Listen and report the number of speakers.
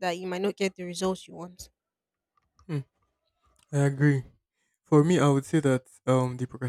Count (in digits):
2